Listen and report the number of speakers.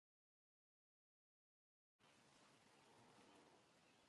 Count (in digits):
0